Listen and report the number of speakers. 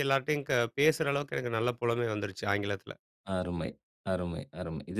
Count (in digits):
2